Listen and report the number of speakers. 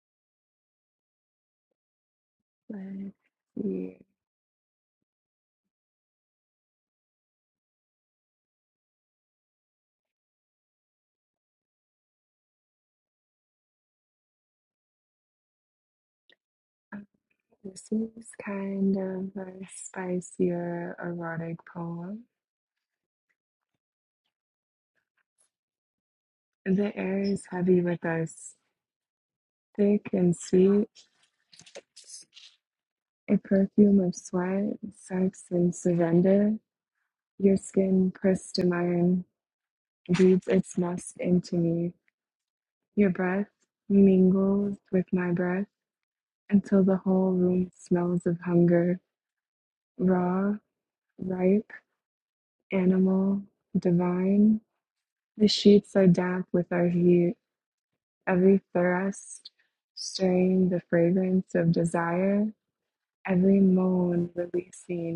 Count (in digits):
1